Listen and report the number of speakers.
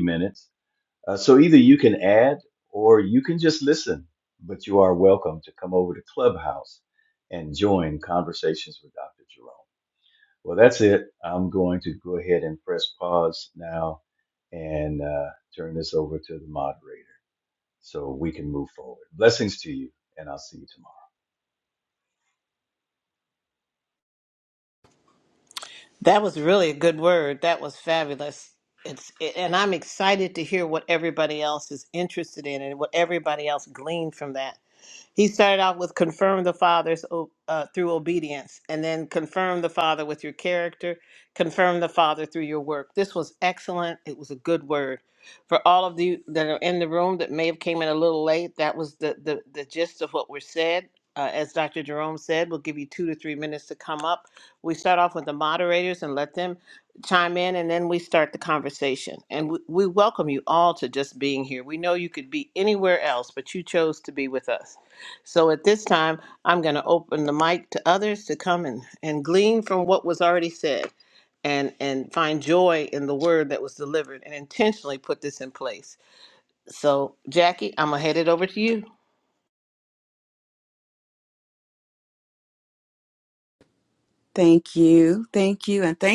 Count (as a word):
three